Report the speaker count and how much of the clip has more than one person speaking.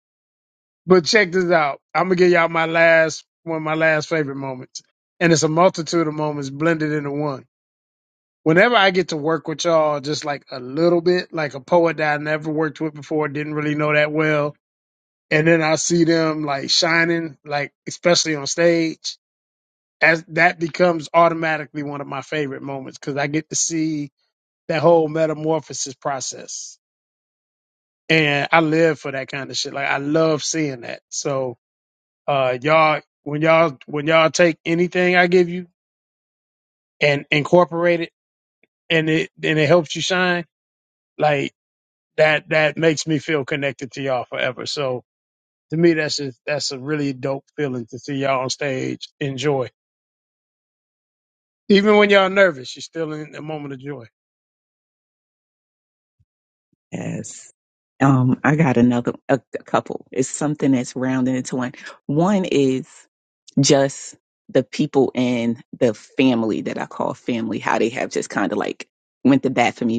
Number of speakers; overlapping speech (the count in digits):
2, no overlap